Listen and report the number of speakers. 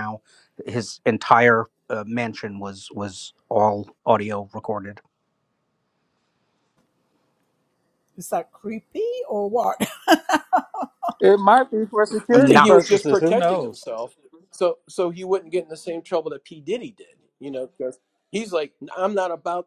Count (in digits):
4